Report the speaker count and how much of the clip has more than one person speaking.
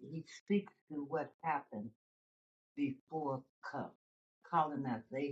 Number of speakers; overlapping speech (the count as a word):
one, no overlap